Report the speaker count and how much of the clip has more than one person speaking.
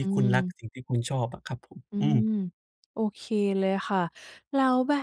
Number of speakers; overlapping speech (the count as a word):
two, about 15%